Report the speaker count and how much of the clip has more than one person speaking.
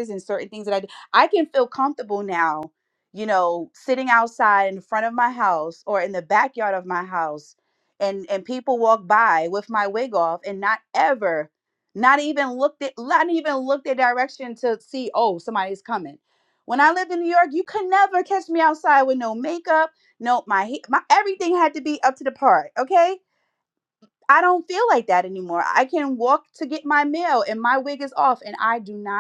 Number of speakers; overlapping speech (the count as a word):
one, no overlap